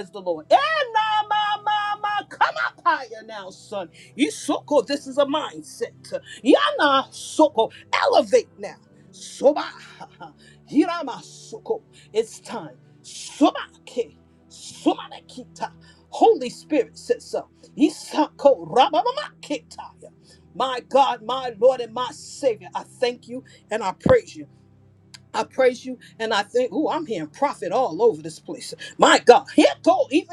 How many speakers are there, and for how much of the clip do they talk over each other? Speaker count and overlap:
1, no overlap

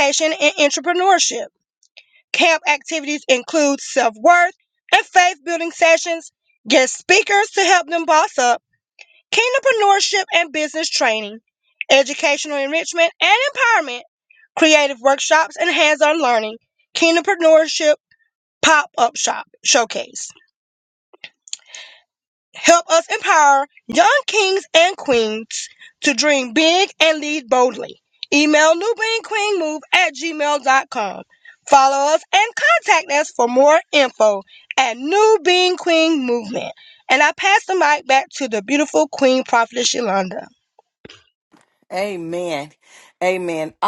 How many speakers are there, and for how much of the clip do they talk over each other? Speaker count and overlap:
2, no overlap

